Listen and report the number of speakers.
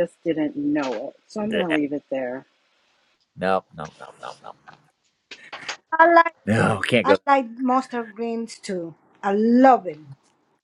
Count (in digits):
3